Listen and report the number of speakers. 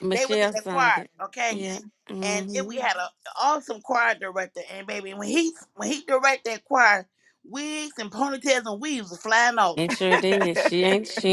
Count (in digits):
2